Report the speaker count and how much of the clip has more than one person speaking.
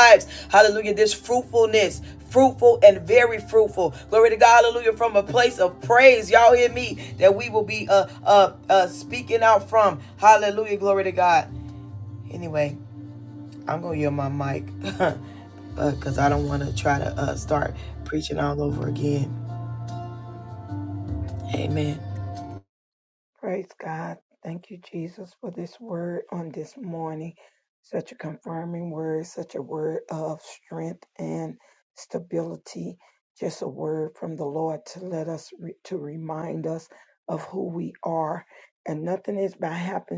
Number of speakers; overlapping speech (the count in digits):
2, no overlap